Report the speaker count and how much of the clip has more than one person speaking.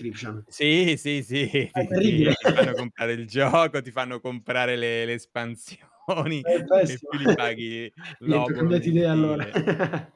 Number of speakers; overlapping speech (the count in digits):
2, about 26%